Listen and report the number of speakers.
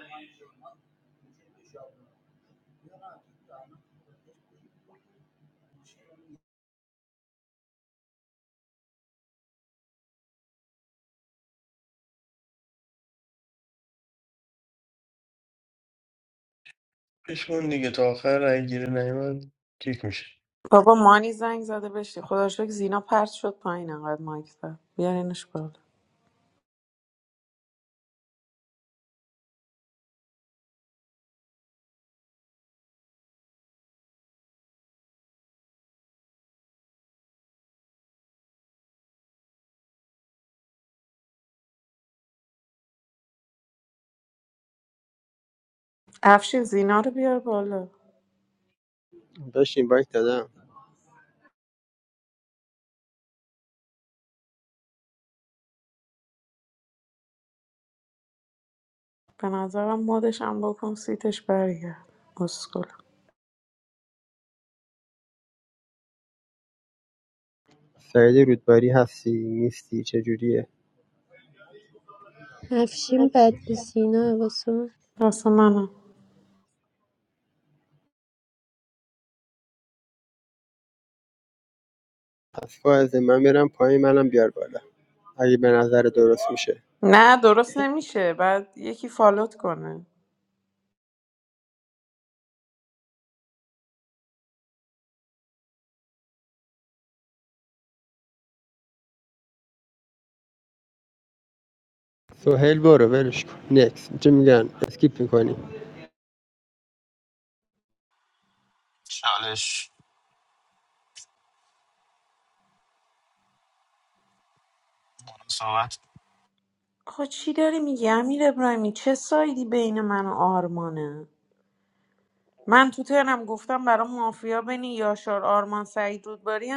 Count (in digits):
5